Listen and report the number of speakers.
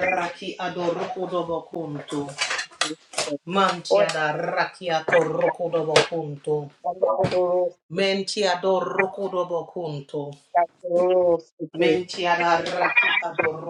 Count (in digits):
2